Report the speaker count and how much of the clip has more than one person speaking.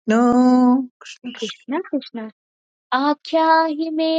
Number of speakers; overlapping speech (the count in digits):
2, about 4%